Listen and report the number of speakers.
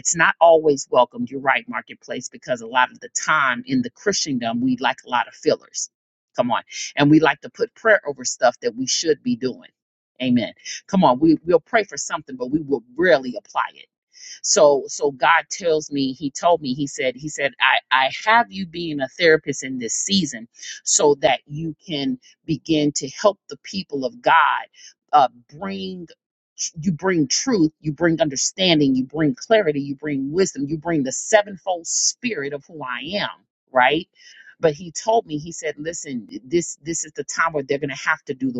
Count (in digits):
1